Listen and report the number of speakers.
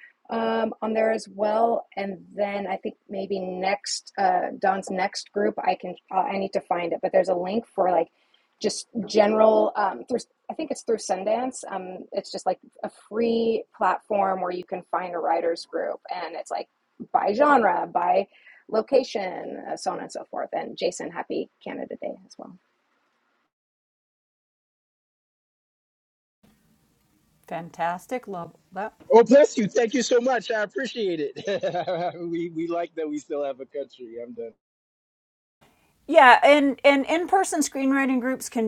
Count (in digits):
3